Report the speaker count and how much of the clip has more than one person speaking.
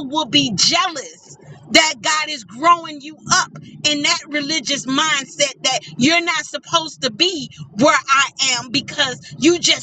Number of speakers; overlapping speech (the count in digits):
1, no overlap